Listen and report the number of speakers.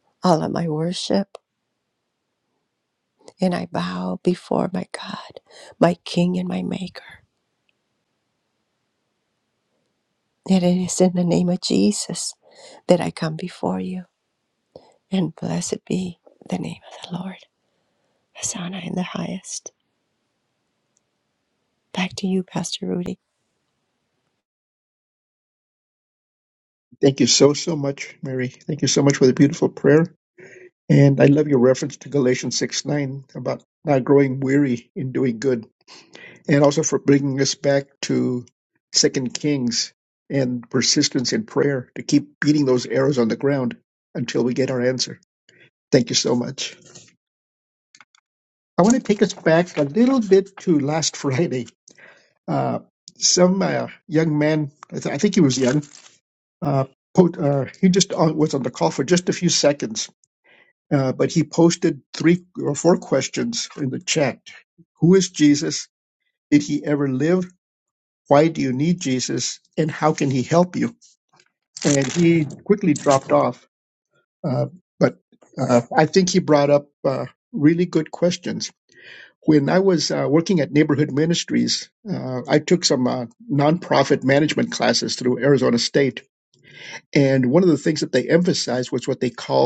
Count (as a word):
two